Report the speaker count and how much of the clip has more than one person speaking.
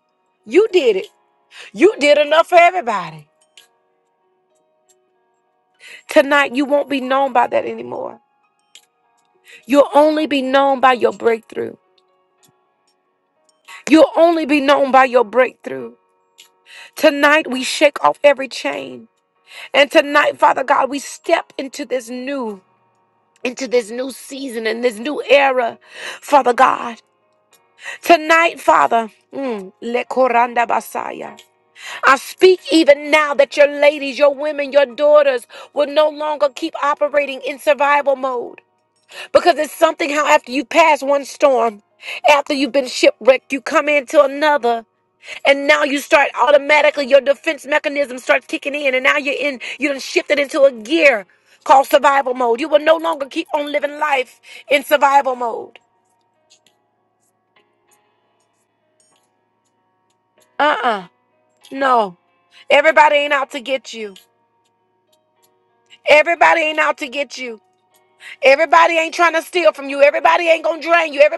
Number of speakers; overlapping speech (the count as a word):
one, no overlap